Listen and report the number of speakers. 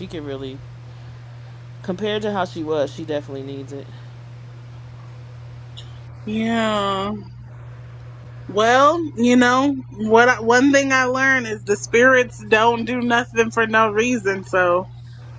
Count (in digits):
2